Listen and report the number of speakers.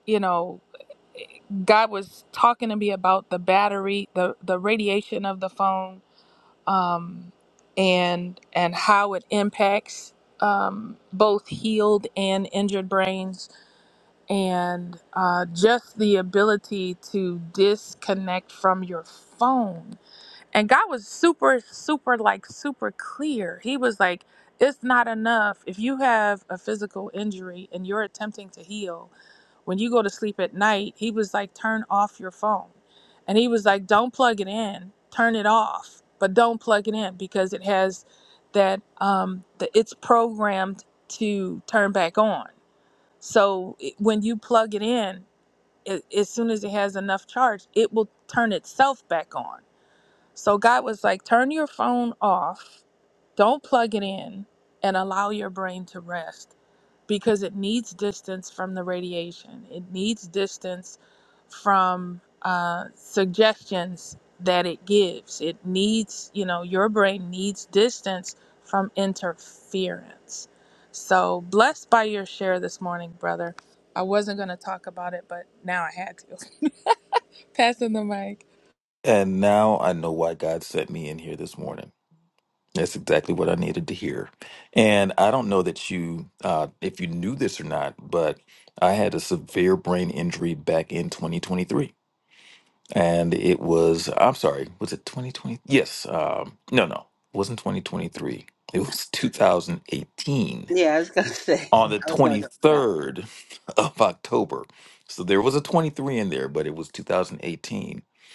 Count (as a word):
three